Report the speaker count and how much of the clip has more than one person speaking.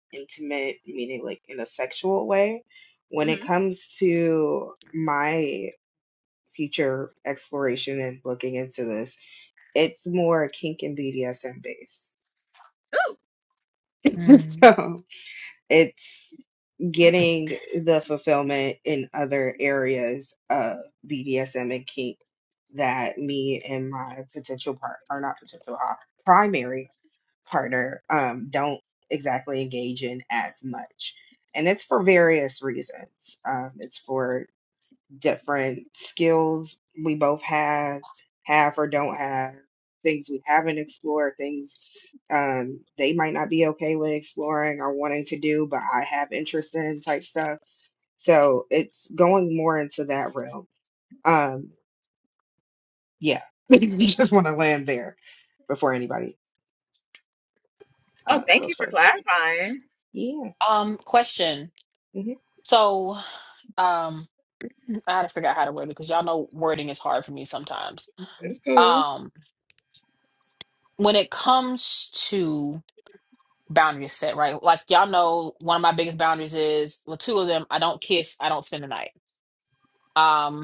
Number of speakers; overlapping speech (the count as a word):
three, about 2%